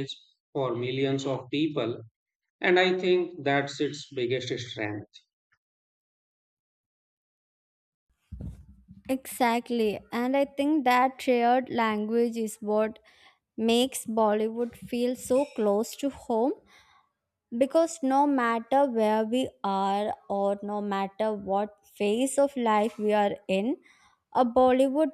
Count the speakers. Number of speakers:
2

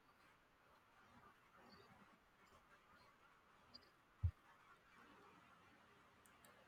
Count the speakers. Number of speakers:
0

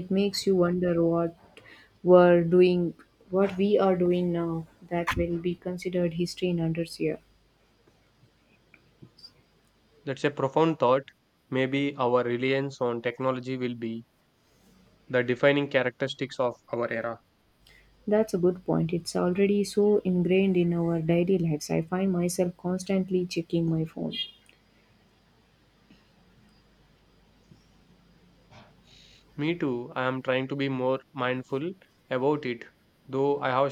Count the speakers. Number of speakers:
2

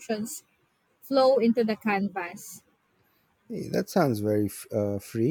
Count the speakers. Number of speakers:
2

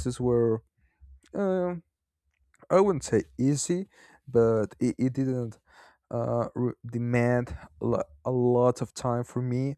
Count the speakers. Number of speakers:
1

